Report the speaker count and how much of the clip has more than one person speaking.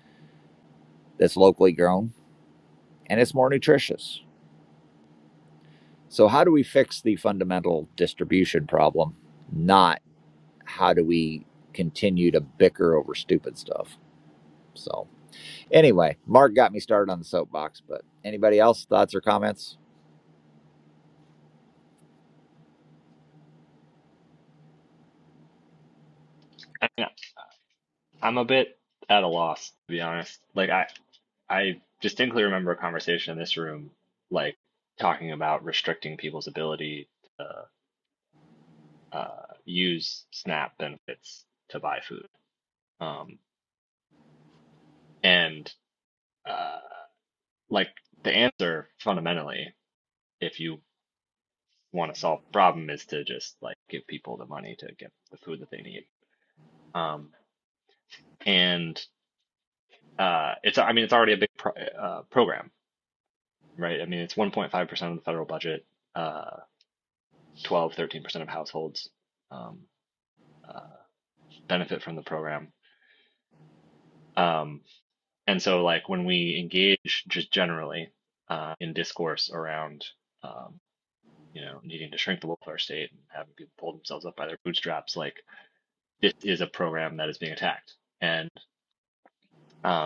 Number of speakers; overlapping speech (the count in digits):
2, no overlap